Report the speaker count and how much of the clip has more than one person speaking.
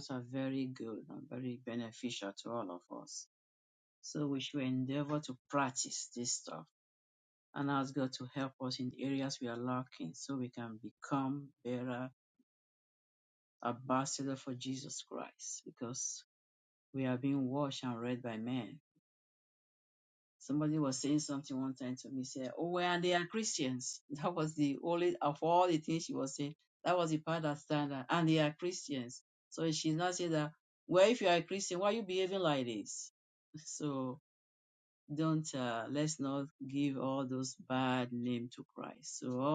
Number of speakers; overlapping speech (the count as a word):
one, no overlap